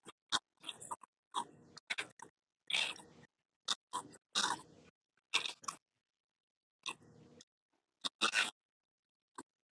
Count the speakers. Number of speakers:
zero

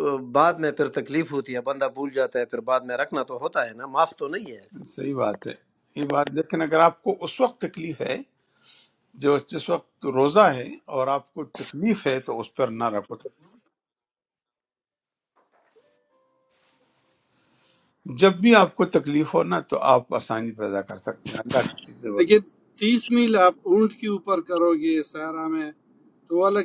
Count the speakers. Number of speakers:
three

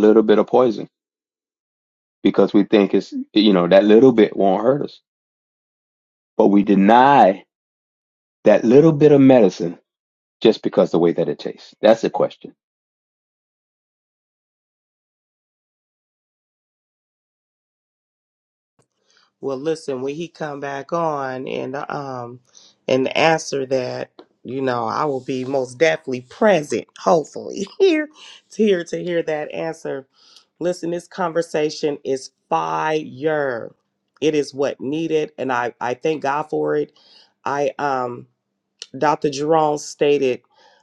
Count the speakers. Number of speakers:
two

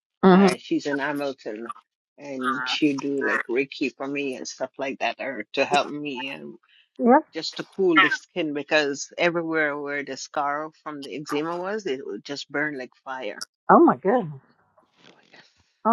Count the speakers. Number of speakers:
two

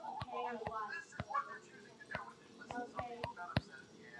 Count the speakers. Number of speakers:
zero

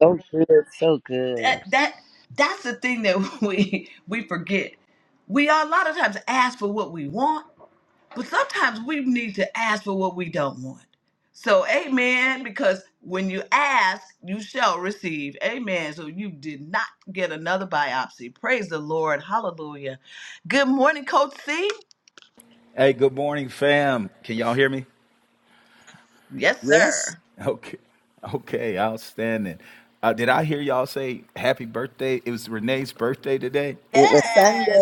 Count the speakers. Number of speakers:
three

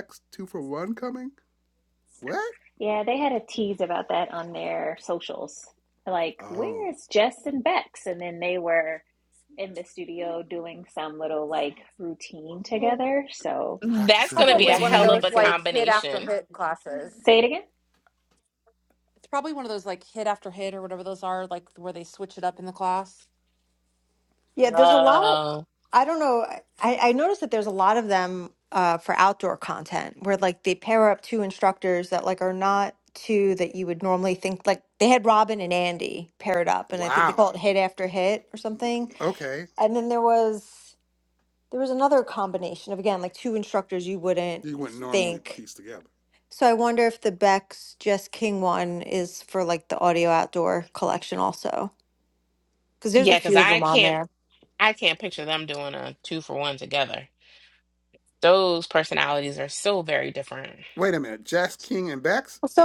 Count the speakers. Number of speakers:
five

